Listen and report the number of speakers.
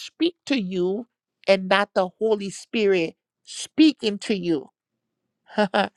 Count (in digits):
1